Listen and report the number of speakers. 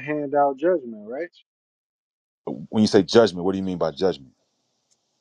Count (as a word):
two